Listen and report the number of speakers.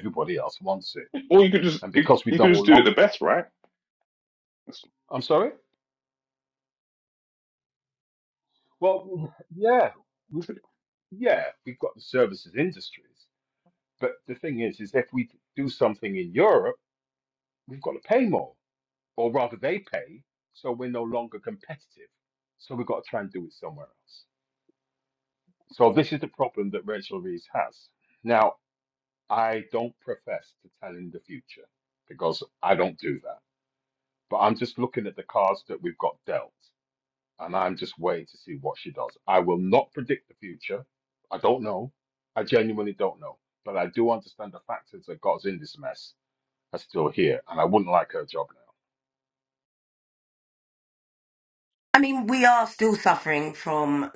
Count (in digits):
3